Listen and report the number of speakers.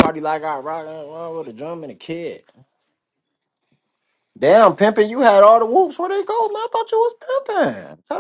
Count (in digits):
1